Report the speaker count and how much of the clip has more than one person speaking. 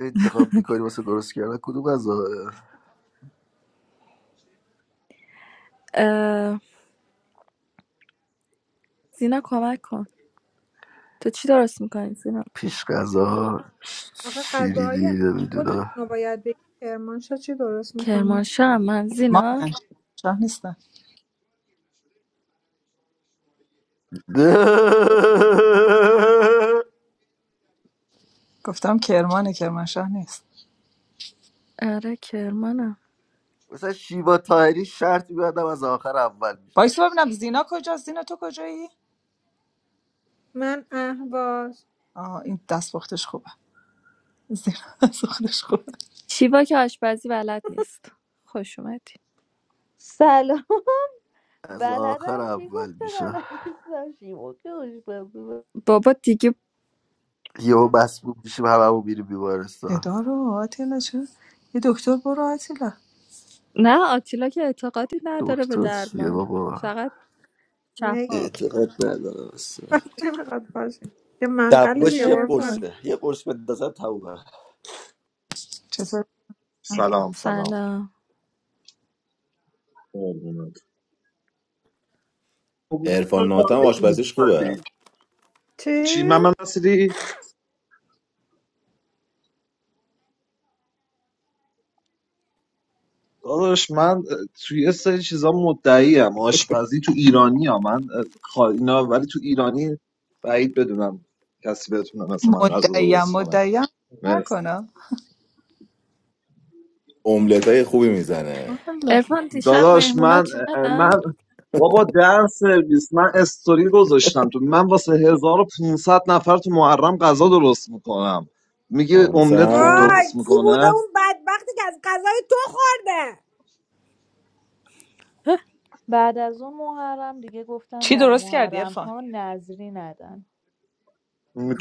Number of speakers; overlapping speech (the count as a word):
seven, about 11%